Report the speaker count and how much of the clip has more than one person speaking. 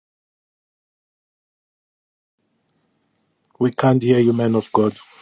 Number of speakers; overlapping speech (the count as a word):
one, no overlap